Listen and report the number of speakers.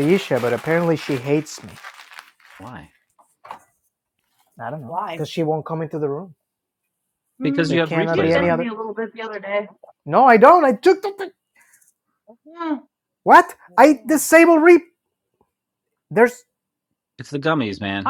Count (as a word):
three